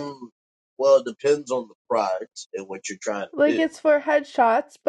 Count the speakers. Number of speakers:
2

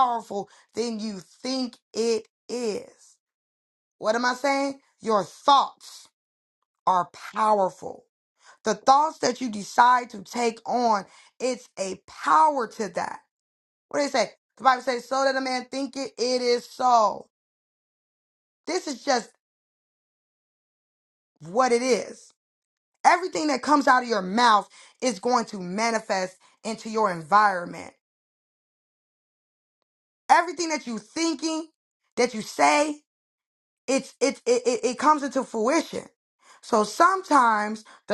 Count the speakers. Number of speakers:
1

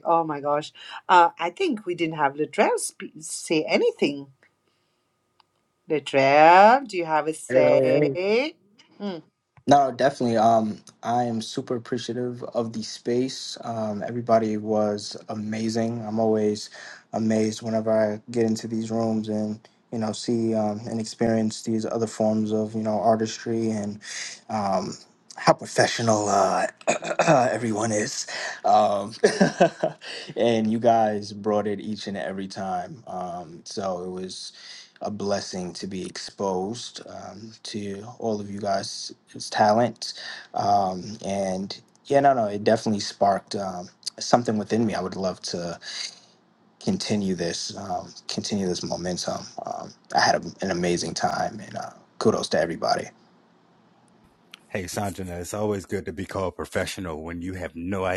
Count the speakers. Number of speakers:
3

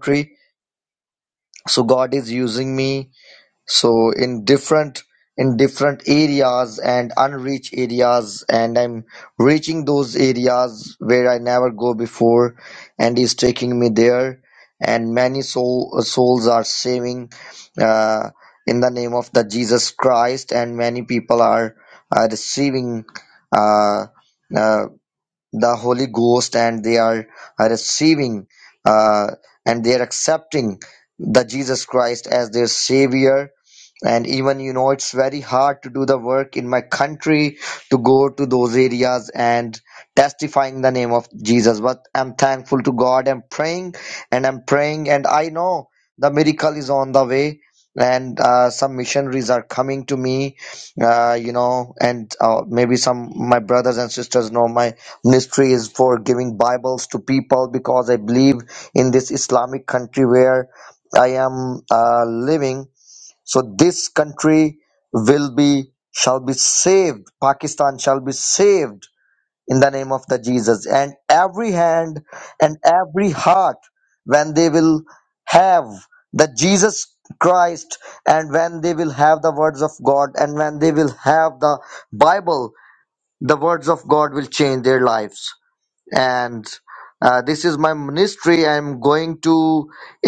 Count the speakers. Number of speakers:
1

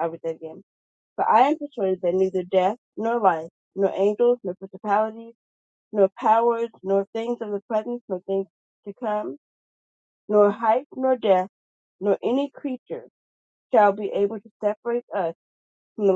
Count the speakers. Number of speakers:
1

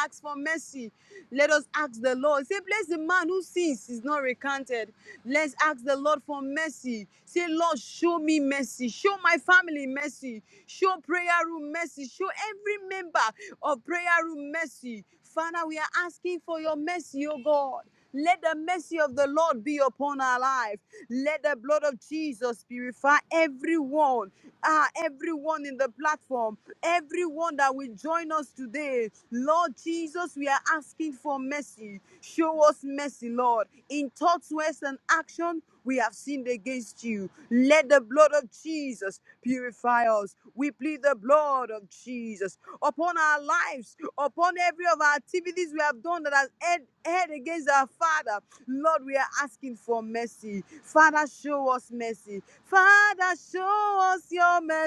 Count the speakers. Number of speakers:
1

